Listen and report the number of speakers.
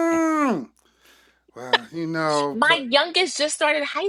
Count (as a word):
two